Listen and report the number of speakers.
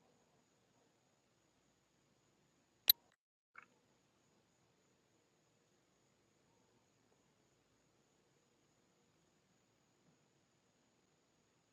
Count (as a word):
zero